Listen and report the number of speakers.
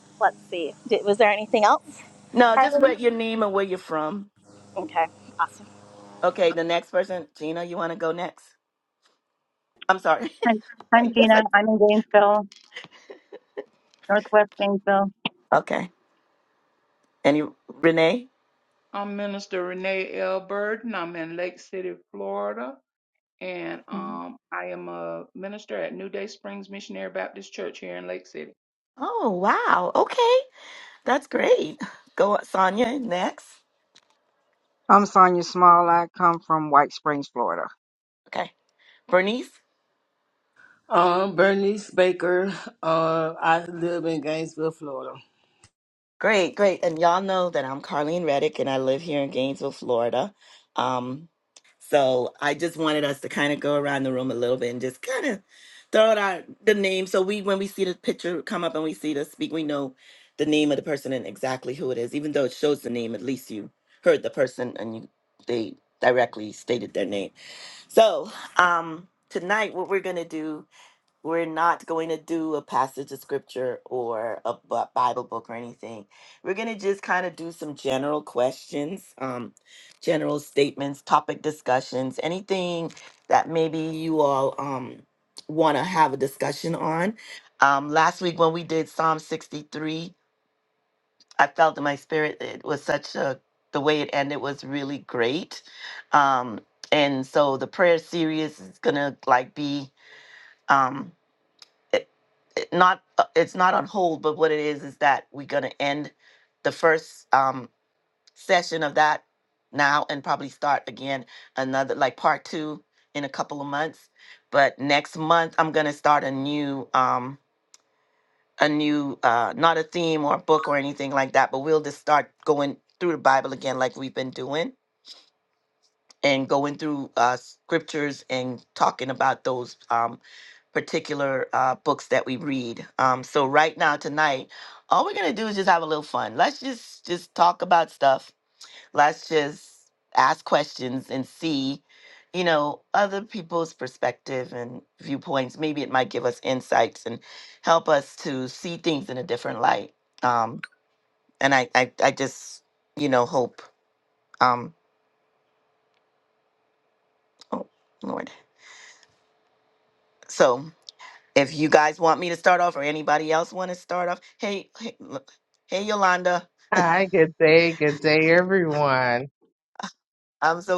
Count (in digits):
7